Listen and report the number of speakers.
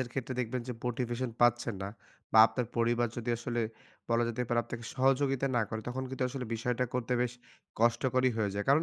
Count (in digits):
1